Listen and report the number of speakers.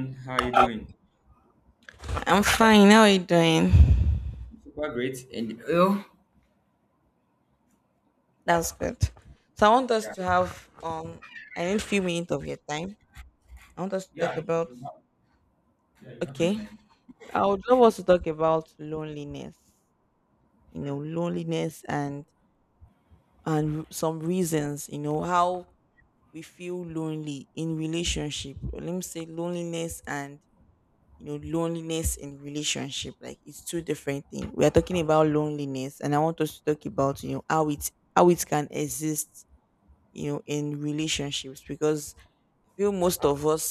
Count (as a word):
two